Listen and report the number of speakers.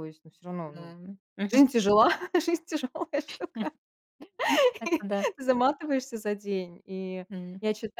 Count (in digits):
2